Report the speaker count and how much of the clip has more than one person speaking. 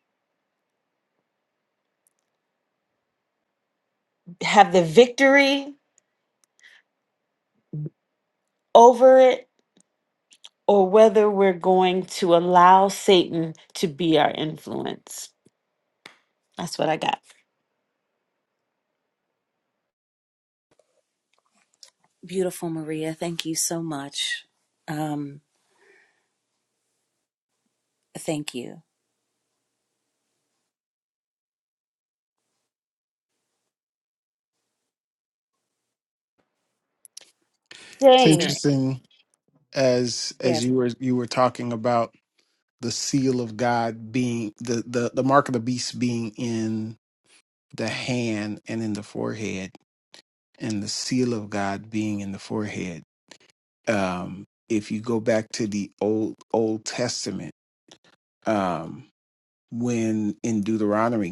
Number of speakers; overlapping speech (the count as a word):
three, about 1%